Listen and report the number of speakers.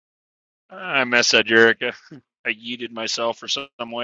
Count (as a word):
one